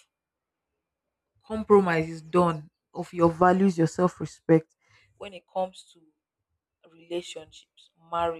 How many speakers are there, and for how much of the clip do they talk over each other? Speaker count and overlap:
1, no overlap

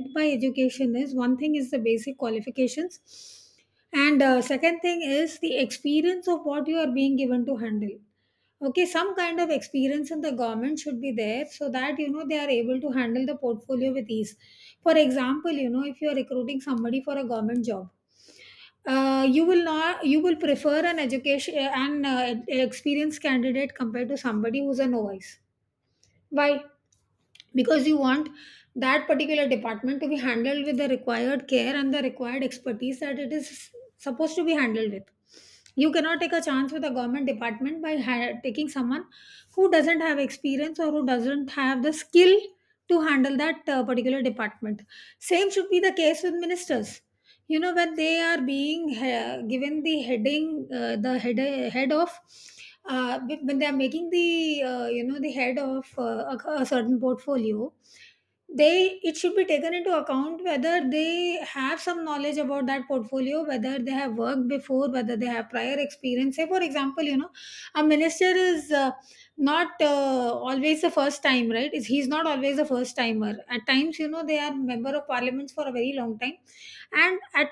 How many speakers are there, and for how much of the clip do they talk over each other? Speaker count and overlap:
1, no overlap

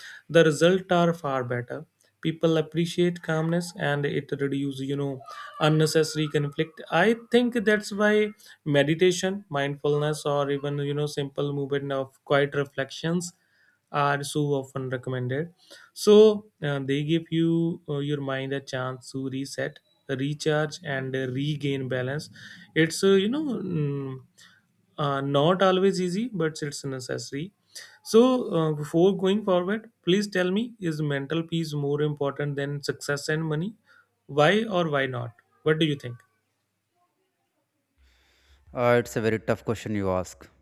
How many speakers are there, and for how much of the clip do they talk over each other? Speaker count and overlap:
2, no overlap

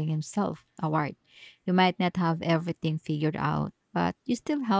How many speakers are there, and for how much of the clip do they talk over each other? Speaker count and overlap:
1, no overlap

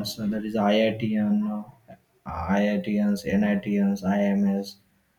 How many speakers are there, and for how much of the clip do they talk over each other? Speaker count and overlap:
1, no overlap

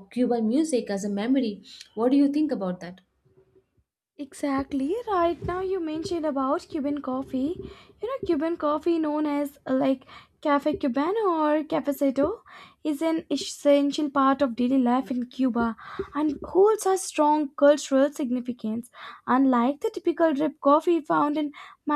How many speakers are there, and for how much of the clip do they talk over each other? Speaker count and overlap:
2, no overlap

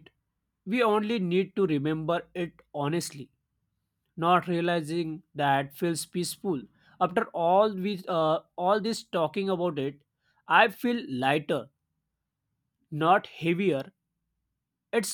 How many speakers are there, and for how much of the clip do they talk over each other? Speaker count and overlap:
1, no overlap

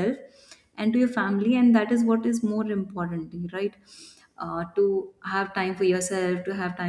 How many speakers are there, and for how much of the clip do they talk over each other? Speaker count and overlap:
1, no overlap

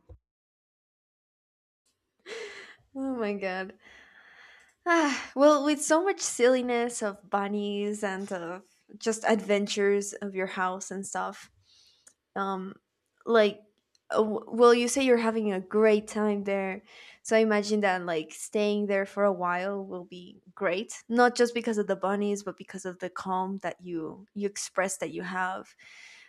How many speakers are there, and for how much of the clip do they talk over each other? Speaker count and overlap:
1, no overlap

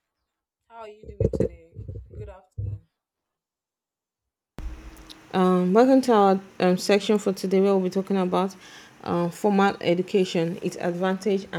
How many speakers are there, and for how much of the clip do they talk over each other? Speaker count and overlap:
2, no overlap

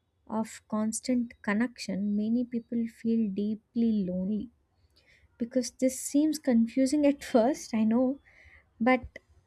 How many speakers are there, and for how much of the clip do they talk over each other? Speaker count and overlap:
1, no overlap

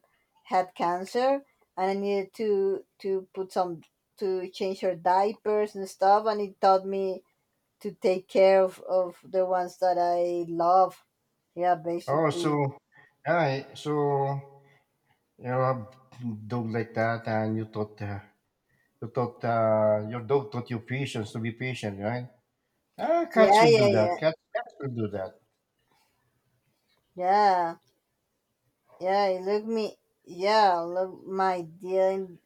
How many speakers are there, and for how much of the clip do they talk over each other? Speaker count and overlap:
2, about 4%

